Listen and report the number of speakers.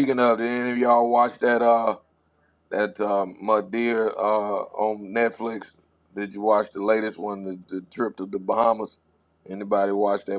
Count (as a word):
one